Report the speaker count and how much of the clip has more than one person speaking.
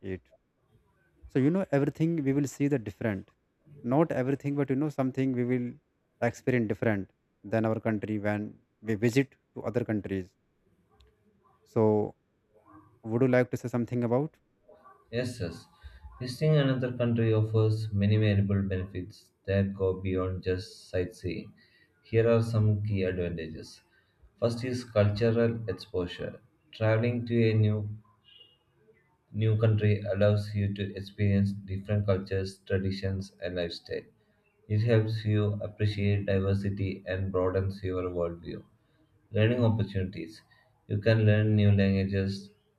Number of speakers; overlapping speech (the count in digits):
2, no overlap